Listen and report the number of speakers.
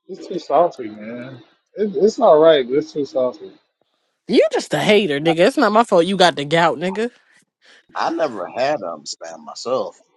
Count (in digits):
3